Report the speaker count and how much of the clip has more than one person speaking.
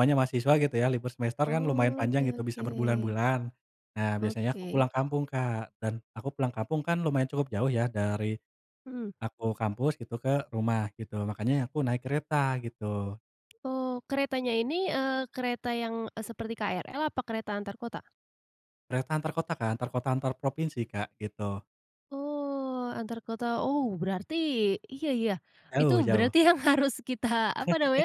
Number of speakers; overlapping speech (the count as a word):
two, about 9%